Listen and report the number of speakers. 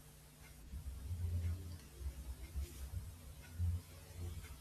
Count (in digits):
0